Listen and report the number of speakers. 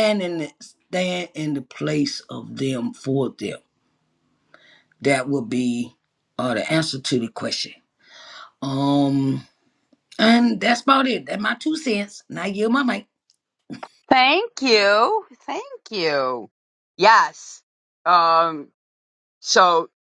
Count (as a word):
two